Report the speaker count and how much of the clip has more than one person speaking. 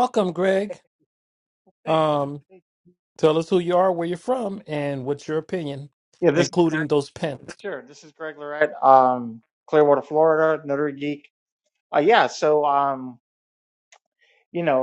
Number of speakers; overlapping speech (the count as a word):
two, about 5%